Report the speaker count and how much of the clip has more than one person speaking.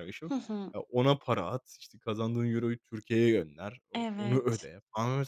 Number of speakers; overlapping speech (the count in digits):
2, about 13%